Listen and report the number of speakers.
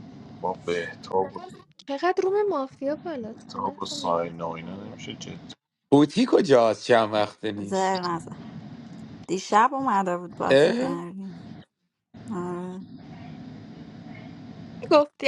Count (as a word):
four